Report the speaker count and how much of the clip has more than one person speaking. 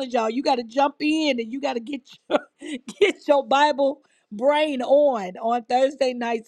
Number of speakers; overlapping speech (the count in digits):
1, no overlap